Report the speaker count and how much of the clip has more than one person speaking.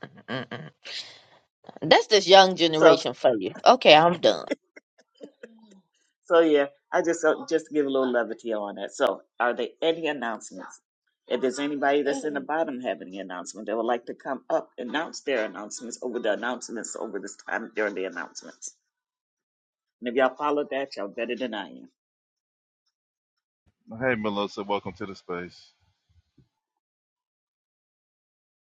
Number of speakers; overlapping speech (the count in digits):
3, about 1%